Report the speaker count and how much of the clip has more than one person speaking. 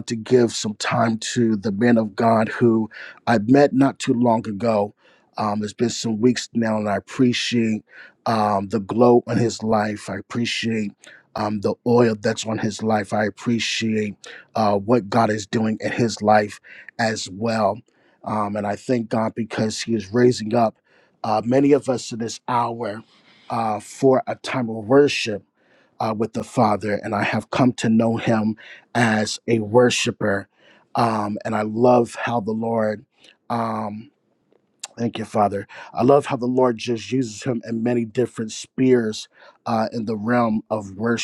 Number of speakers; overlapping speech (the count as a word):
one, no overlap